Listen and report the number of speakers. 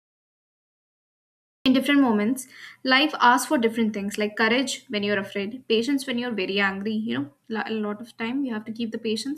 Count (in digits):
1